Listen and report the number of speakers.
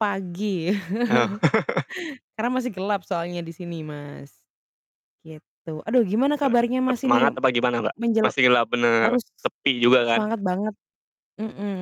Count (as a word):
two